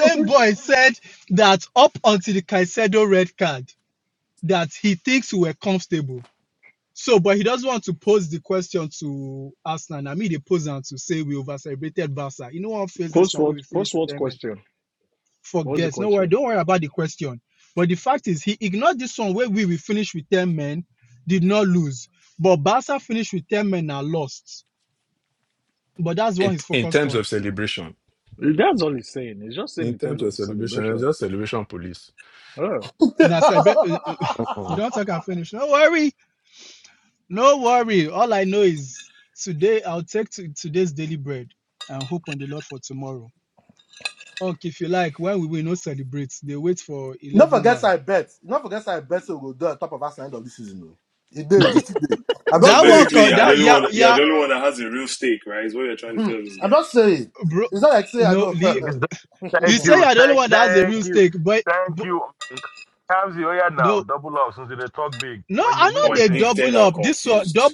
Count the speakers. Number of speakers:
six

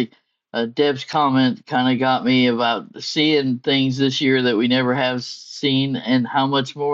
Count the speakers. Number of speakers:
one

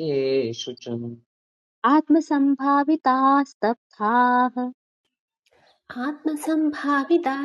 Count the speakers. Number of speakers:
three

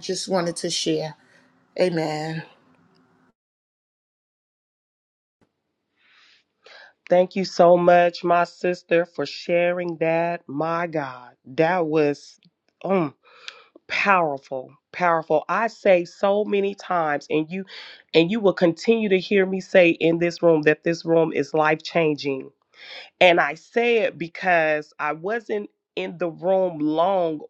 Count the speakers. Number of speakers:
two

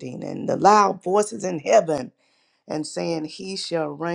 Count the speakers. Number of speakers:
one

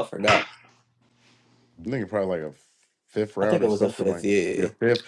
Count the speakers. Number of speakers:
two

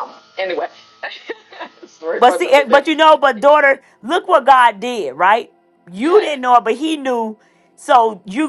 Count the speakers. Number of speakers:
two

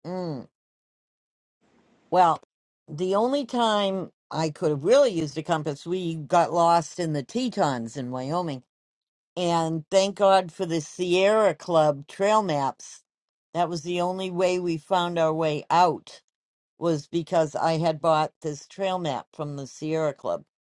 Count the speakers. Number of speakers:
one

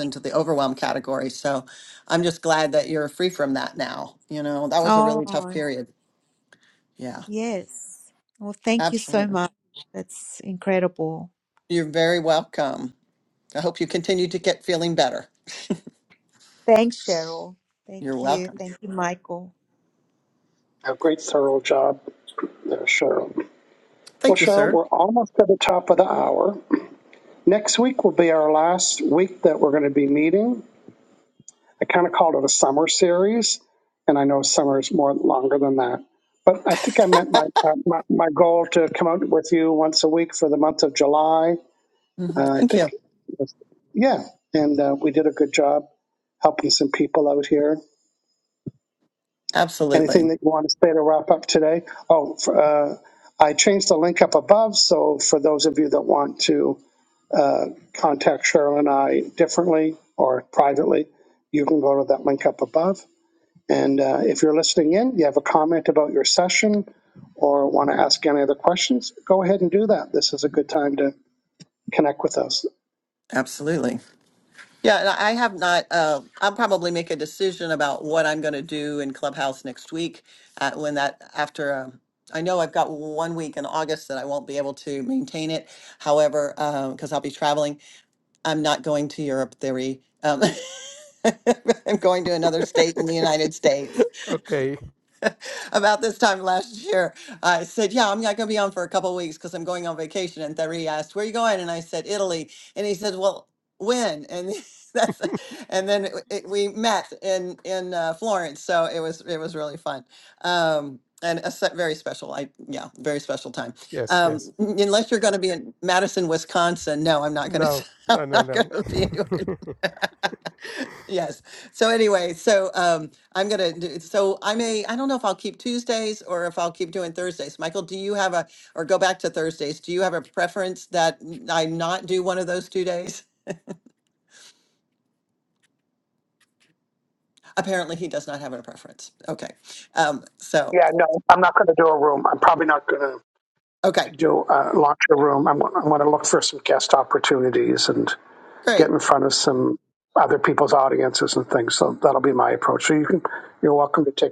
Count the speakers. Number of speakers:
four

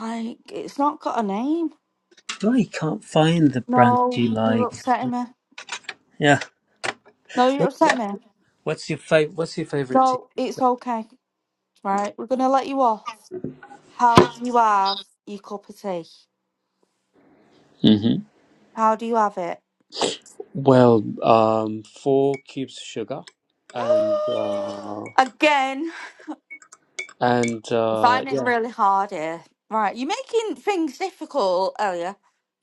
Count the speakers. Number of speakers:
two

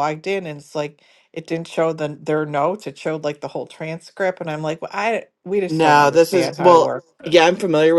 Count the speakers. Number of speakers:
two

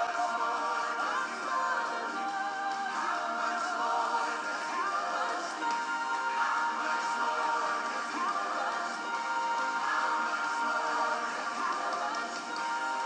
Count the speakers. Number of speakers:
zero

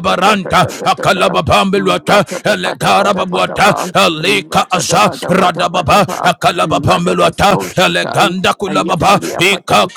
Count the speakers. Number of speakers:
two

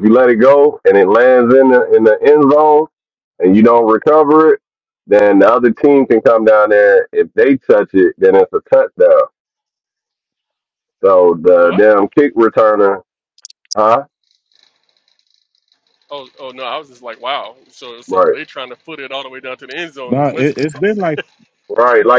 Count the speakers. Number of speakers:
three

